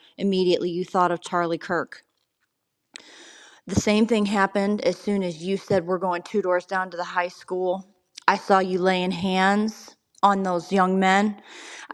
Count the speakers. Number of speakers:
one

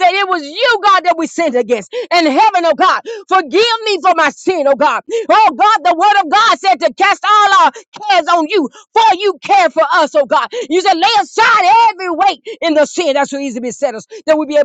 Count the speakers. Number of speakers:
one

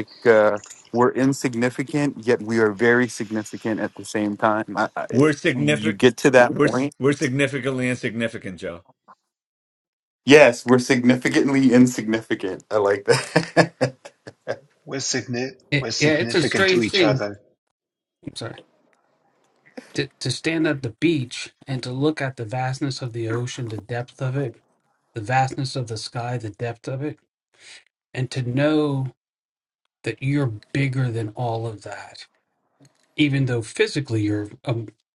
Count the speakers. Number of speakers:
four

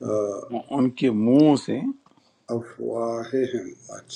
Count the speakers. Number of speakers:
two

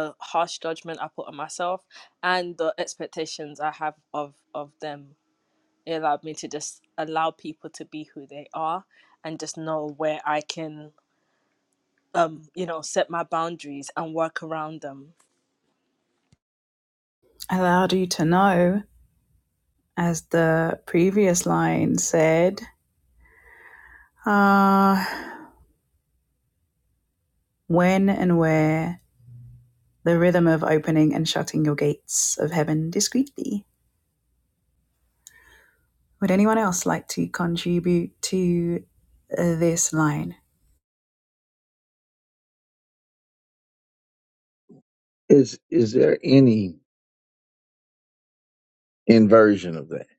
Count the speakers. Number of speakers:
three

